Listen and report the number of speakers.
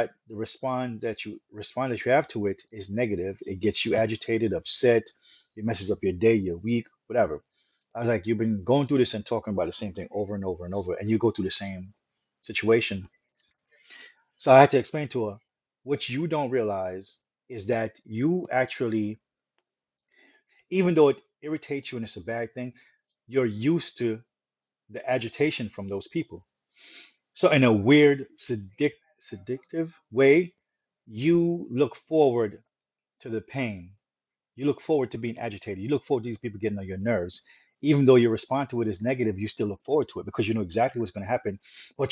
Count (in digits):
1